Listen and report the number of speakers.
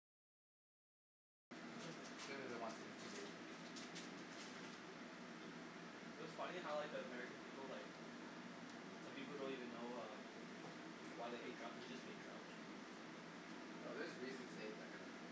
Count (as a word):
two